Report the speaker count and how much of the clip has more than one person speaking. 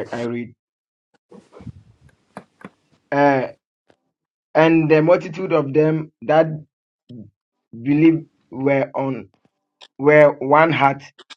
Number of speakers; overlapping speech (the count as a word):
one, no overlap